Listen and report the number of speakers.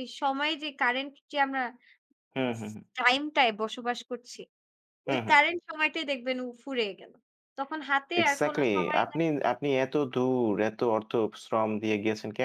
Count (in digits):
2